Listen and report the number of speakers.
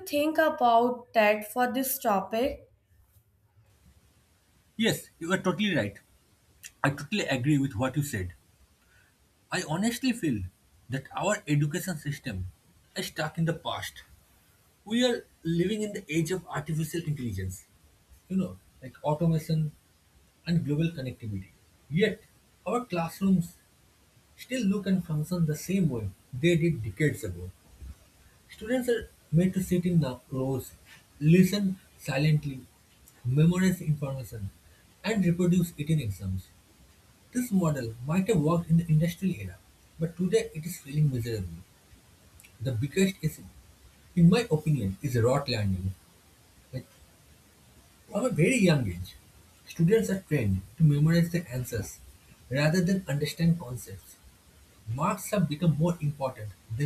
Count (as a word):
two